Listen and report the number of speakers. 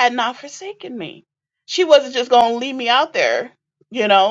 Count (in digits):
1